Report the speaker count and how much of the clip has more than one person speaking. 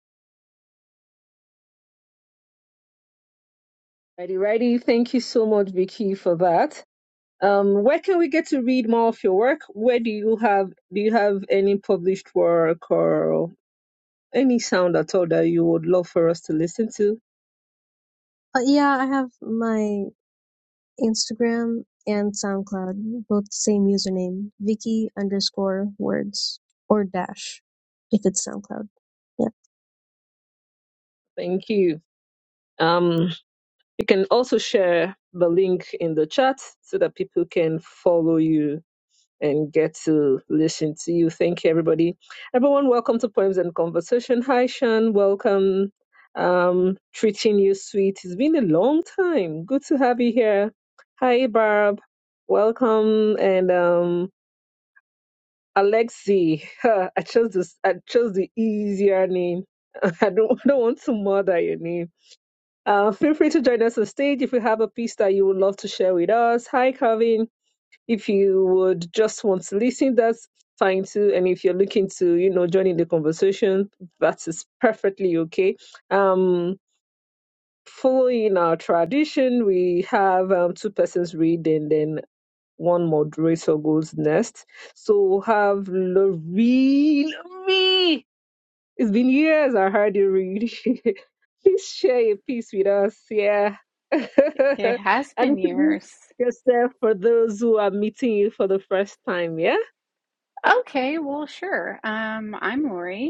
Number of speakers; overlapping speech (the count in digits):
3, about 1%